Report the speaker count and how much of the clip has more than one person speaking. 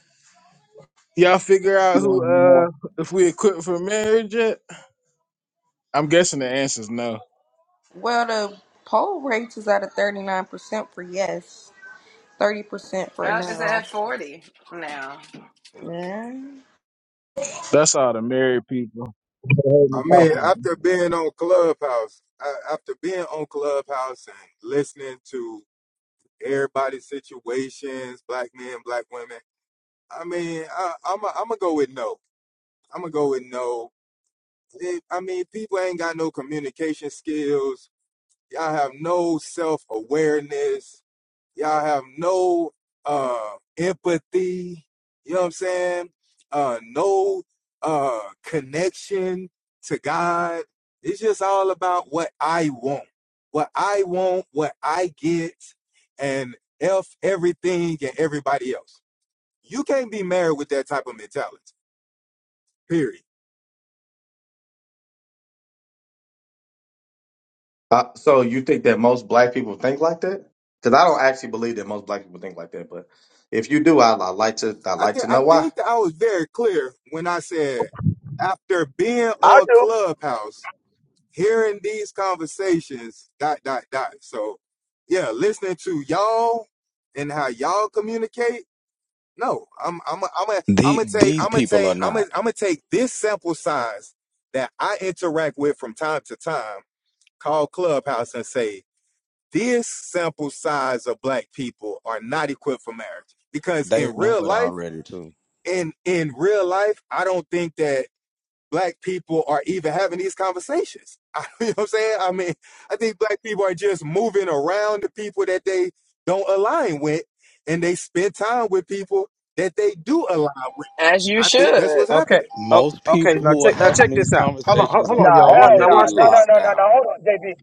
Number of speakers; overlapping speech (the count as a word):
seven, about 9%